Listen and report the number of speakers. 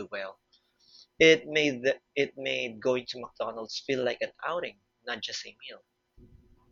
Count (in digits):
1